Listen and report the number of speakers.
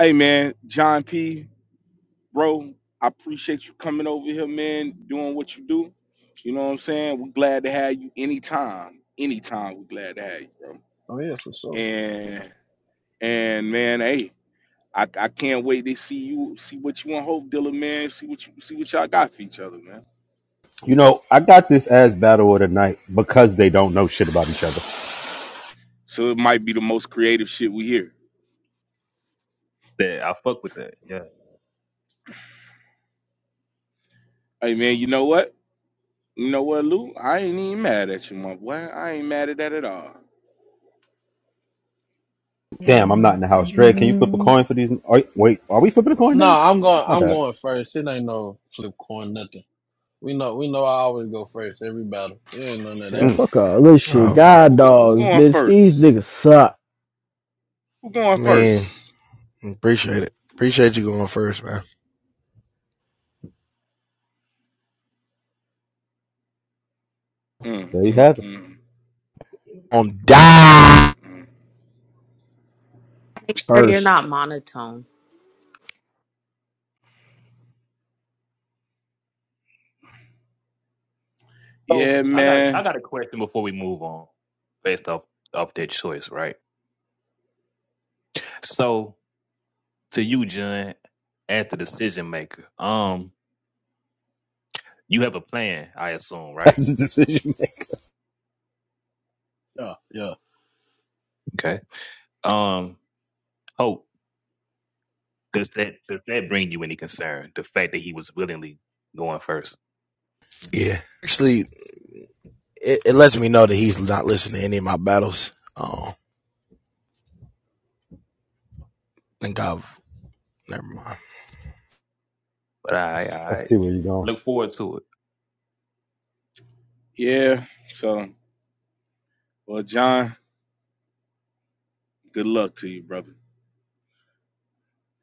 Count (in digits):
7